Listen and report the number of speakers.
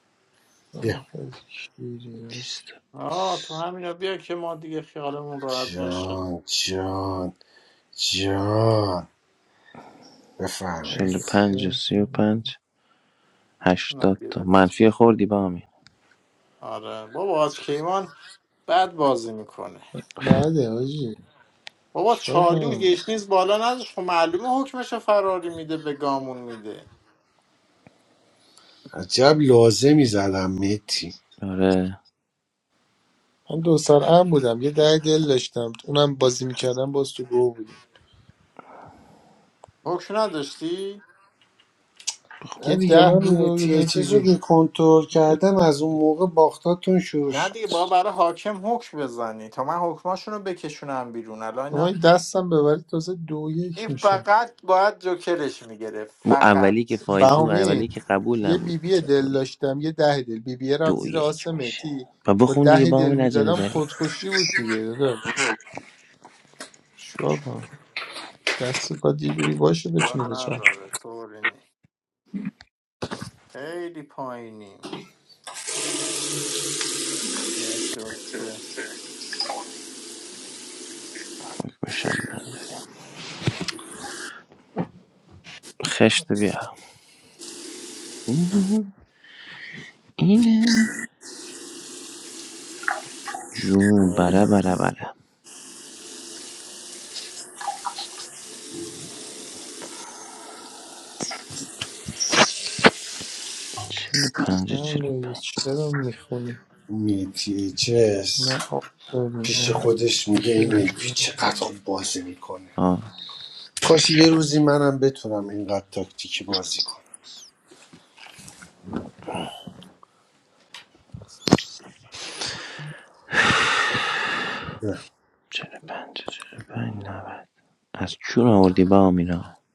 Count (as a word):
four